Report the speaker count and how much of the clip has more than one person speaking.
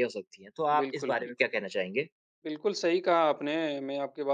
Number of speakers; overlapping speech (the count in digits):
2, about 17%